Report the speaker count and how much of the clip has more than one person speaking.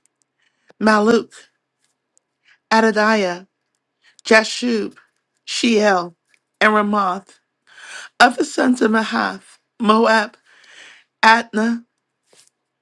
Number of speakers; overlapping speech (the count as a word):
one, no overlap